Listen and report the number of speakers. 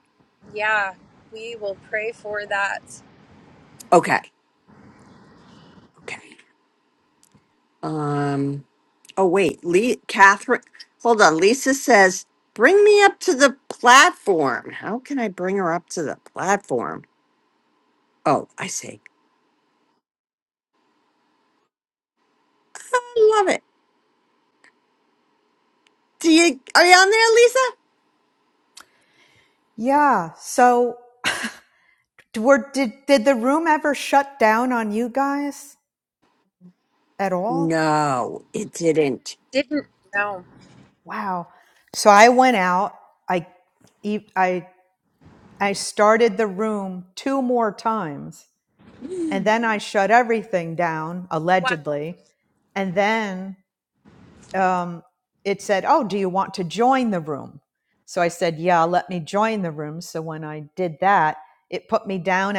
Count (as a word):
three